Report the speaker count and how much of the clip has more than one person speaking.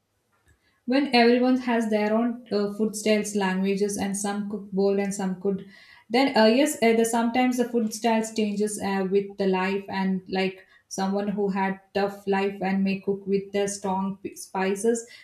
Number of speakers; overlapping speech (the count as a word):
one, no overlap